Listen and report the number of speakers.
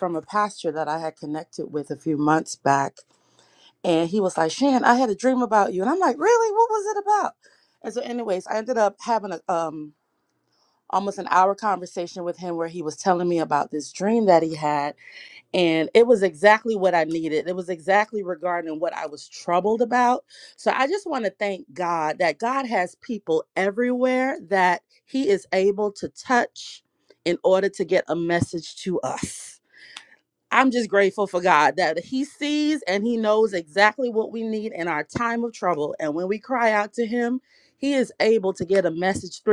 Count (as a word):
one